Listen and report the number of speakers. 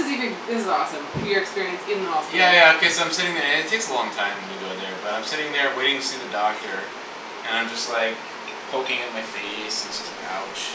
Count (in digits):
2